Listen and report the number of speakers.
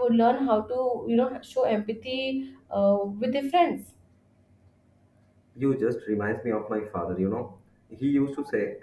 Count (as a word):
two